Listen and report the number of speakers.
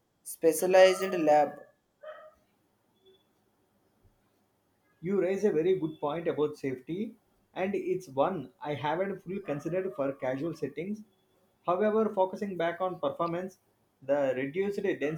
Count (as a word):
two